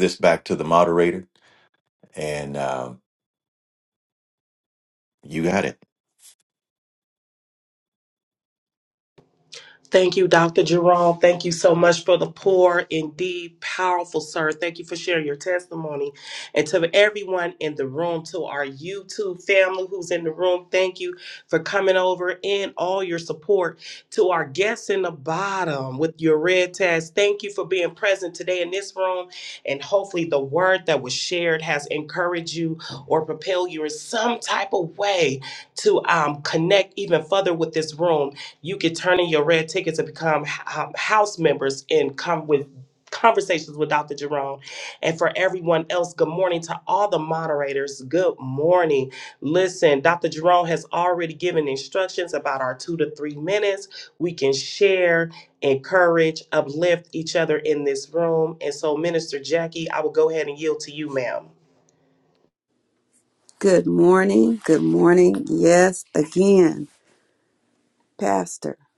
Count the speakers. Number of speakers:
3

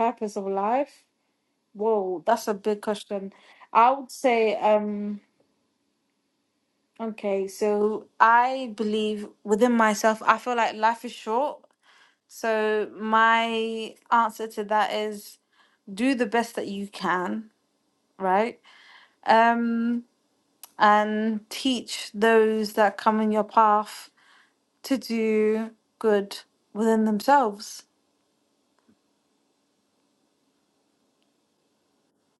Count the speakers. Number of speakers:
1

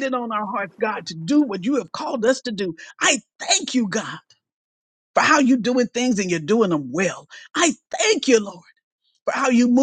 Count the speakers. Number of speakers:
1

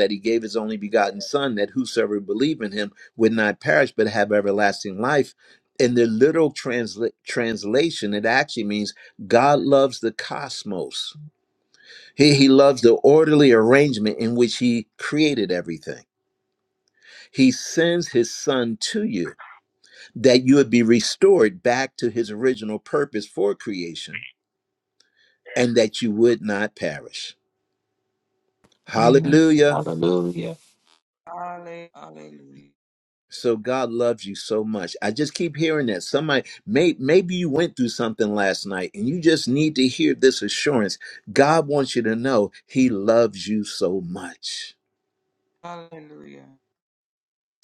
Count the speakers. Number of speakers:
3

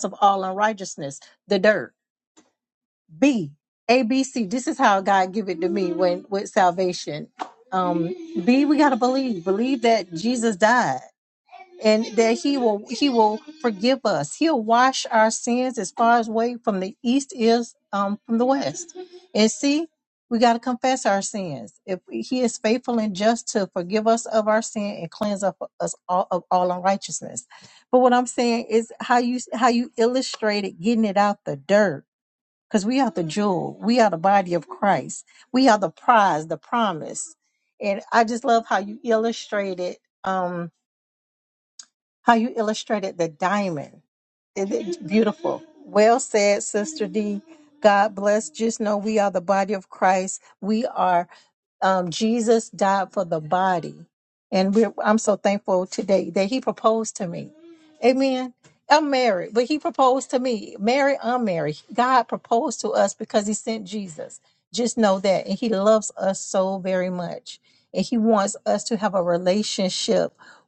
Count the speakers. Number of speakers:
1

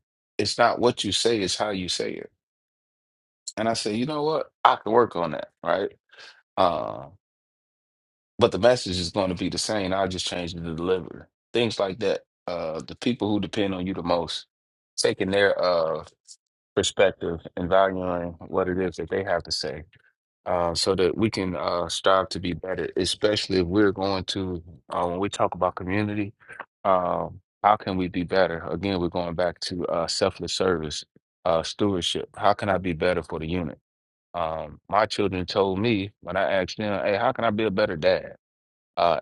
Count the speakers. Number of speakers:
1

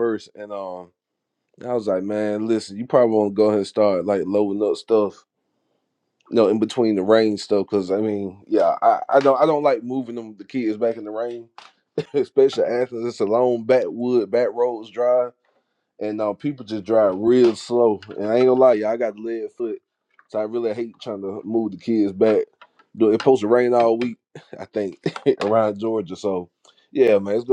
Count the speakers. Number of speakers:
1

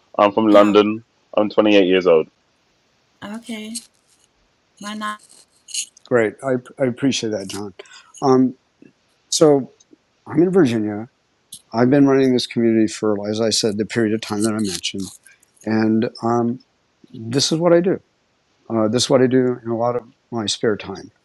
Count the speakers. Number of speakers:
3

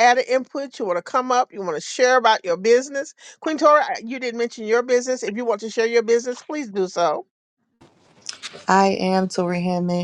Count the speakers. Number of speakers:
2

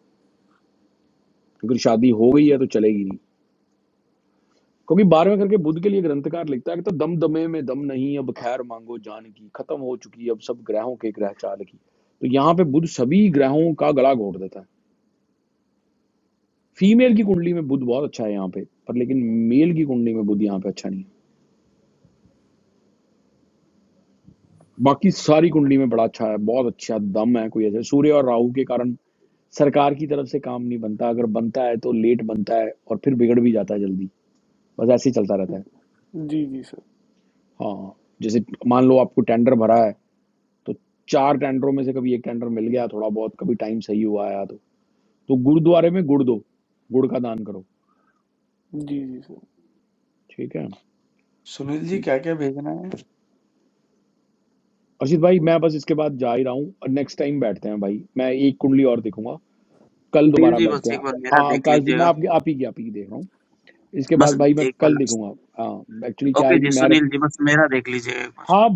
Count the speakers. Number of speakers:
4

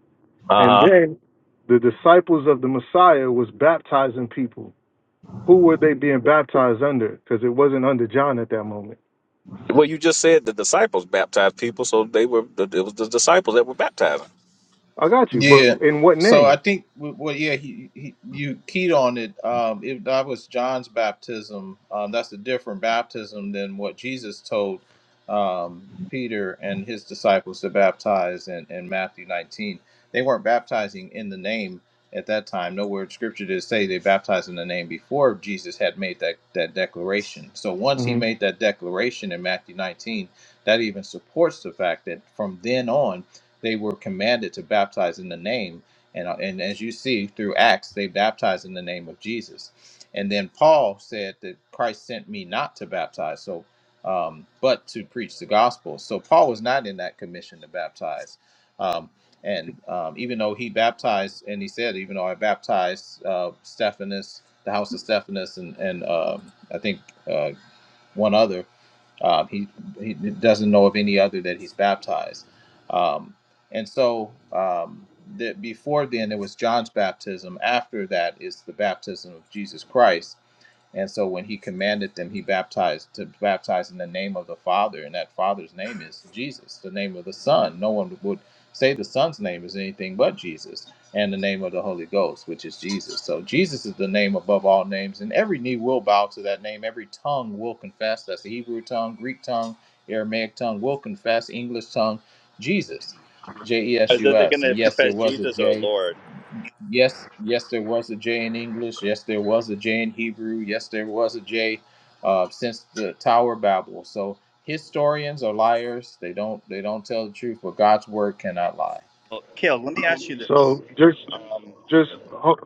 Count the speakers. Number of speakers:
4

